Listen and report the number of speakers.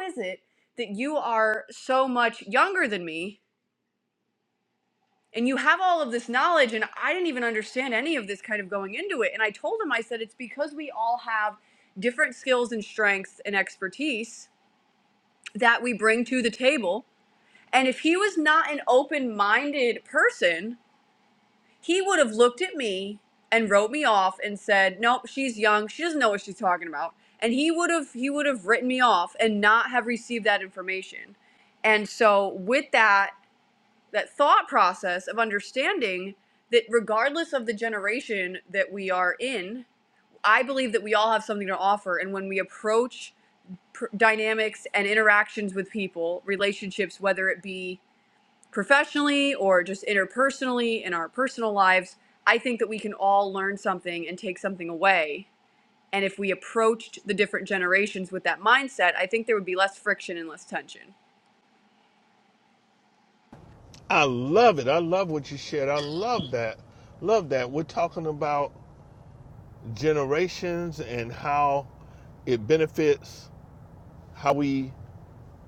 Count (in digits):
2